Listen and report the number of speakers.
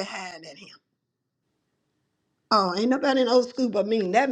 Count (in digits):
1